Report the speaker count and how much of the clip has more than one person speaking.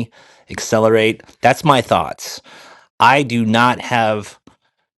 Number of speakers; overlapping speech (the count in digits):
1, no overlap